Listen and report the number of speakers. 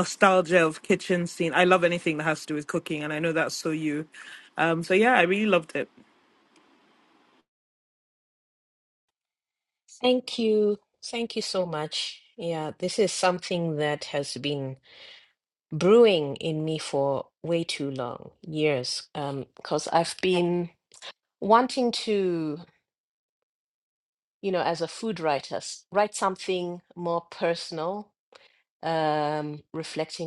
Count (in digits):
2